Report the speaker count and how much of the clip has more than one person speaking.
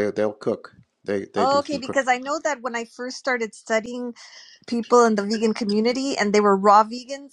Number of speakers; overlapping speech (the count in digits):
2, about 8%